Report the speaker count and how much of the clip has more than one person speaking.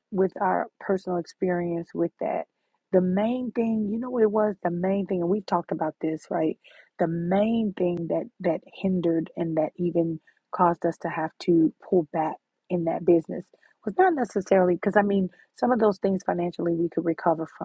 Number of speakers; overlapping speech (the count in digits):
1, no overlap